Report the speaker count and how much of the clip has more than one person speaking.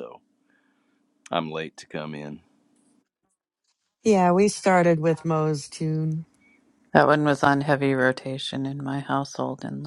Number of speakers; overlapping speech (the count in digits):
3, no overlap